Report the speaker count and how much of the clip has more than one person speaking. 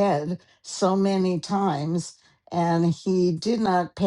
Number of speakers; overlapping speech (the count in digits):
1, no overlap